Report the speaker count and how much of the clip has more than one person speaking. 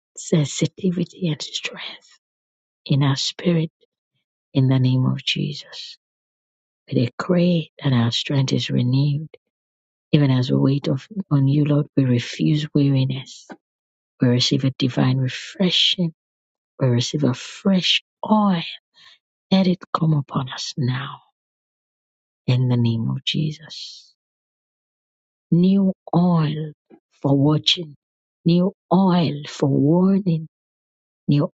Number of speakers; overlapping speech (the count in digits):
1, no overlap